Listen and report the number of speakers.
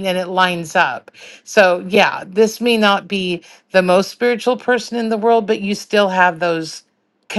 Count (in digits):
1